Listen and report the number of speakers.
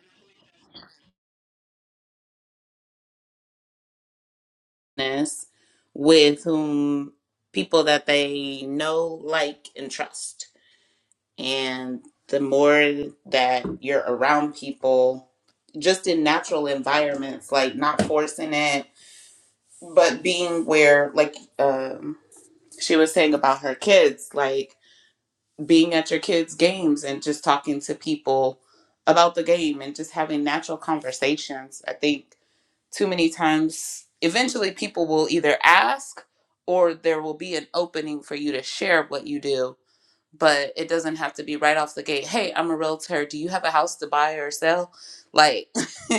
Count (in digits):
1